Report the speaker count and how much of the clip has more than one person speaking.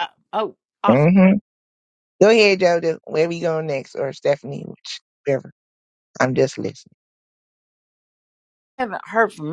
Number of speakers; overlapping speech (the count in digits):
2, about 1%